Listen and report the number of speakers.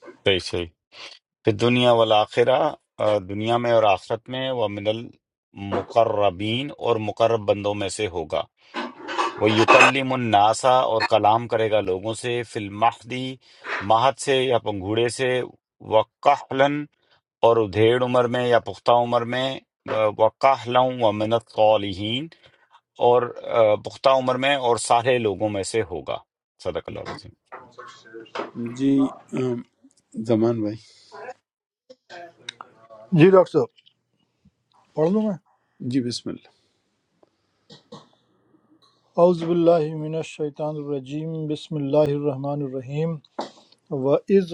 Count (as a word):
three